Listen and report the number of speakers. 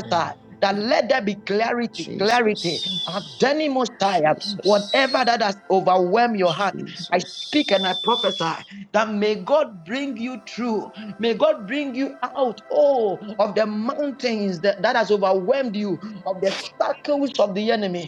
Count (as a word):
two